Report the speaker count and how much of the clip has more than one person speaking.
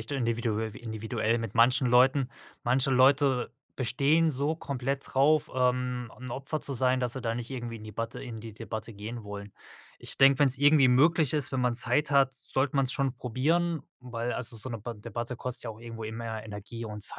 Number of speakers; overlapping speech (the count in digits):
1, no overlap